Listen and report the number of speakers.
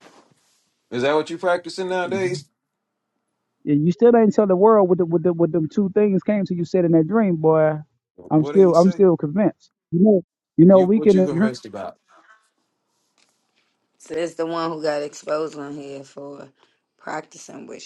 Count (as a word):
three